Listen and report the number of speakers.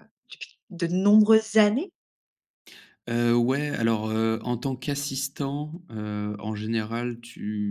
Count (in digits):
2